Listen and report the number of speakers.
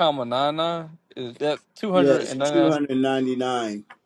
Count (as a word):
two